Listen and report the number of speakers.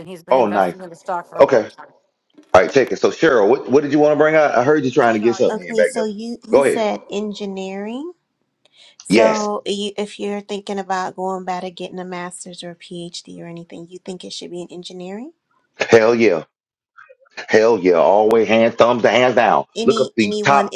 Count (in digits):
3